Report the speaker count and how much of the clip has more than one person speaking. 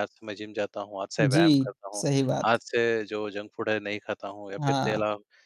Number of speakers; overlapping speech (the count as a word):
two, about 17%